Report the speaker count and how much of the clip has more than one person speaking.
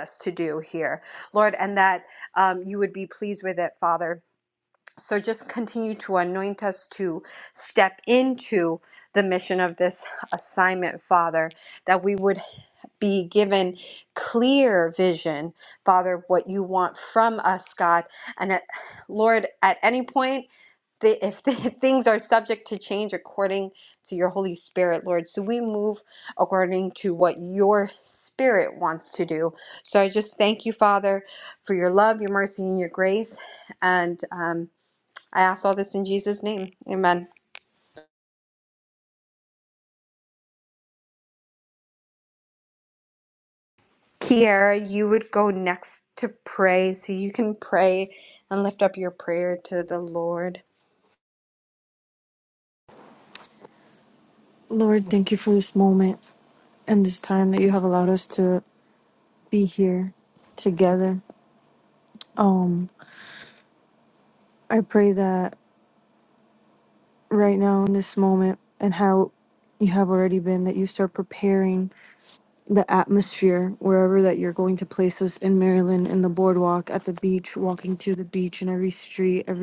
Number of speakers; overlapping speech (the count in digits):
2, no overlap